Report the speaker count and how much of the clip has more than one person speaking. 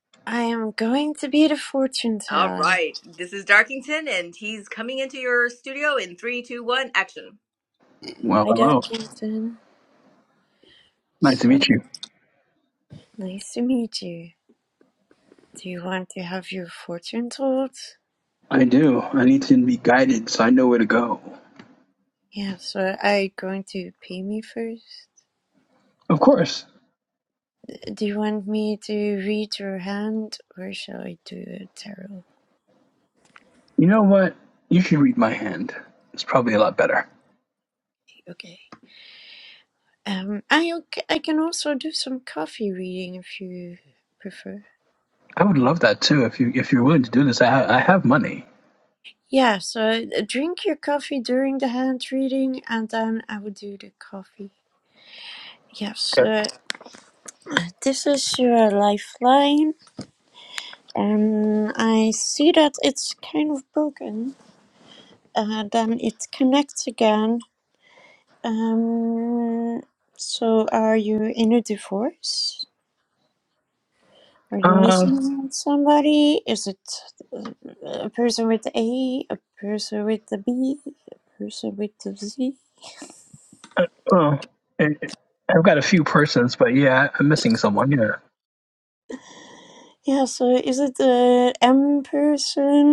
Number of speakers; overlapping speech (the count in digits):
3, about 2%